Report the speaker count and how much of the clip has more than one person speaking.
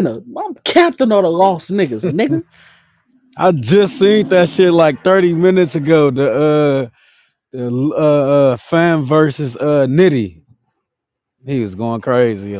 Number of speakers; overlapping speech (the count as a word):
two, no overlap